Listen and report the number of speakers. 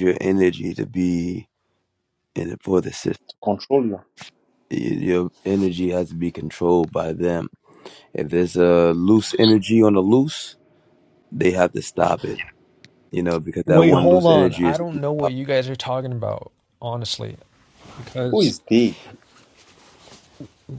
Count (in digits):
3